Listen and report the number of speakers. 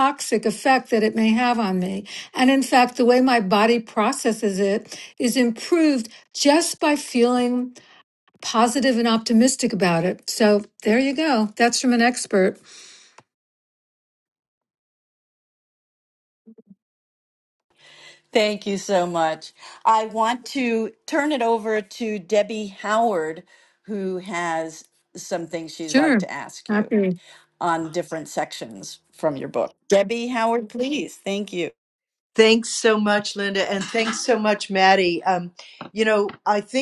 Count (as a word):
three